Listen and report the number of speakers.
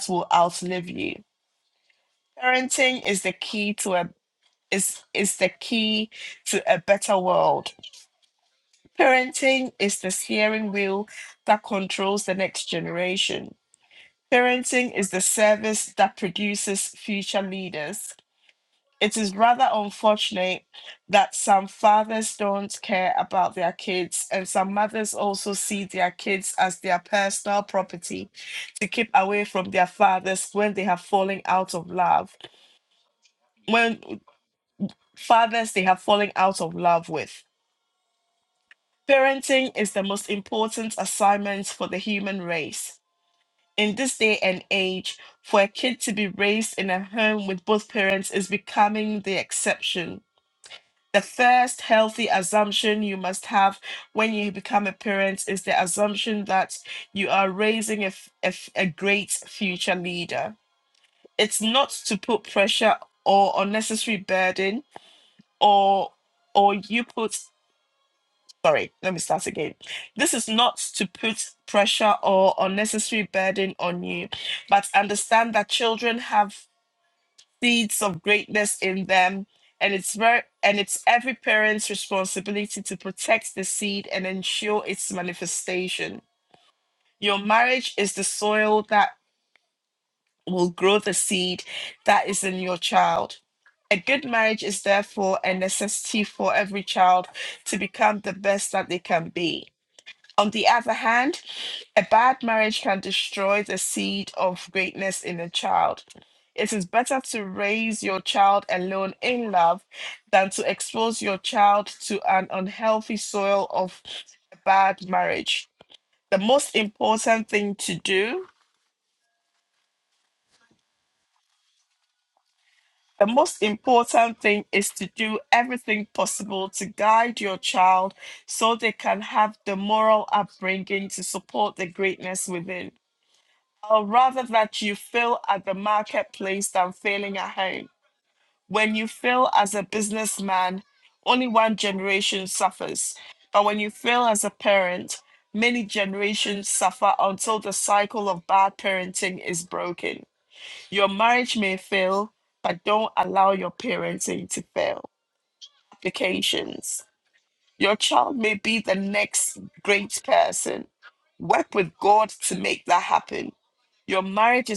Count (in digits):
1